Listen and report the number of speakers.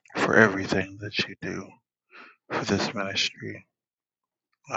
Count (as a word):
one